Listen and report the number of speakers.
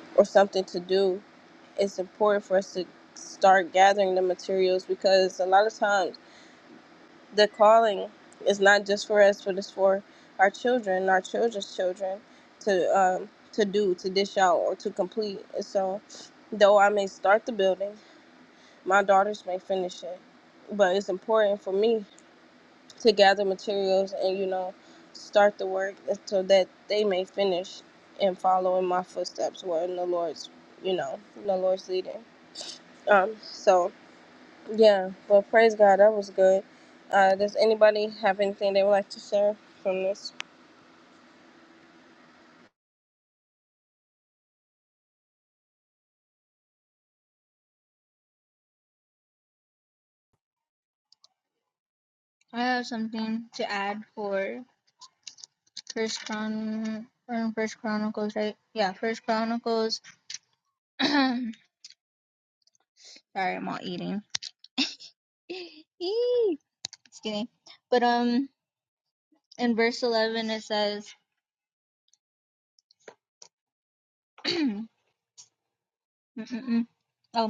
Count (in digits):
2